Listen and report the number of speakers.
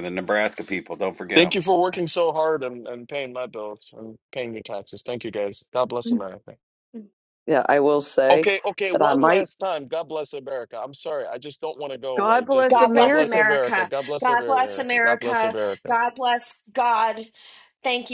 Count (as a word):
four